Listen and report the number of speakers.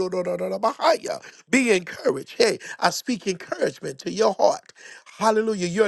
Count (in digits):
1